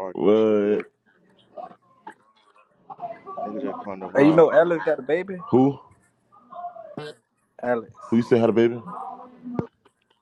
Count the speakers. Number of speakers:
three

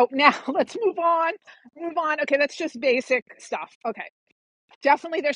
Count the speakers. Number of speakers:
one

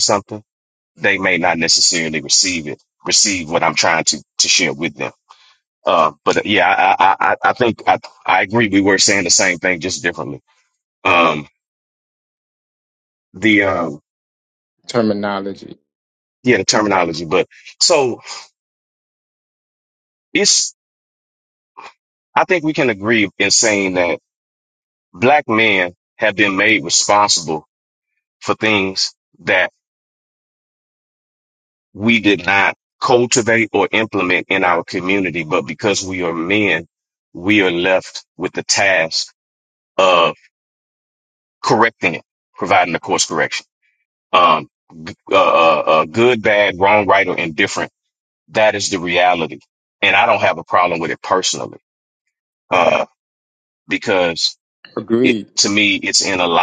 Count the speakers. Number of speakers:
two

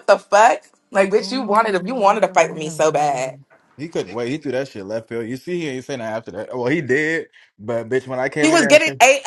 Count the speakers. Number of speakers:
two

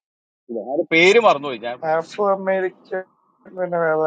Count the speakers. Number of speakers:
two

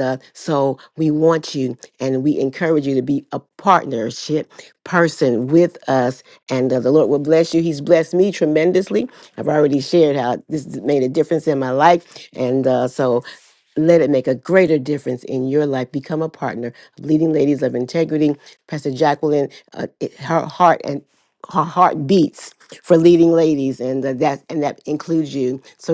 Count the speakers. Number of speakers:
one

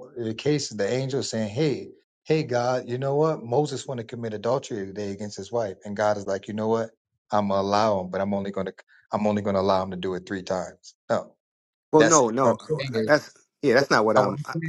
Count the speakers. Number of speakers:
two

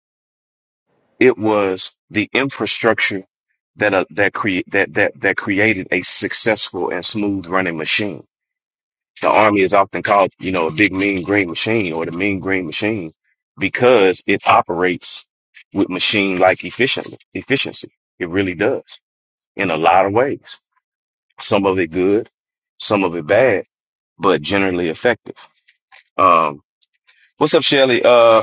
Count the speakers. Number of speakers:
one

